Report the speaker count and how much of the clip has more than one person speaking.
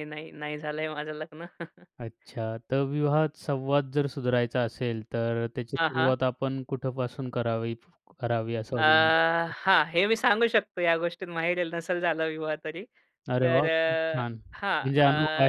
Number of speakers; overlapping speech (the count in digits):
2, about 10%